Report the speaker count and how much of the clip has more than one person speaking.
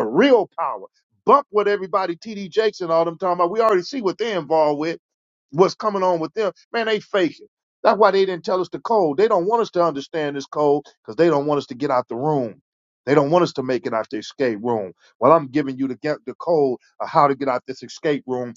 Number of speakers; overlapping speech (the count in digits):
1, no overlap